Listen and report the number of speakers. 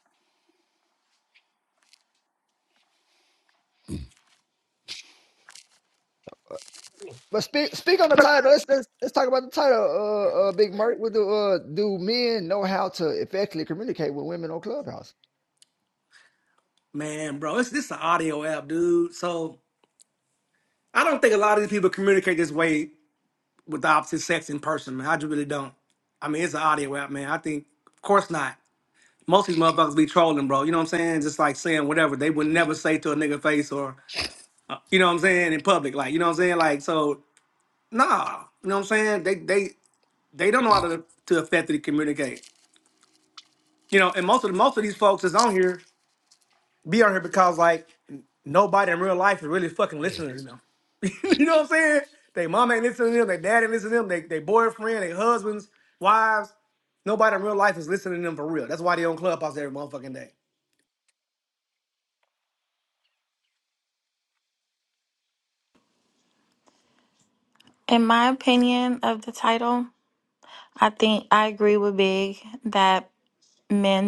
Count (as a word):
three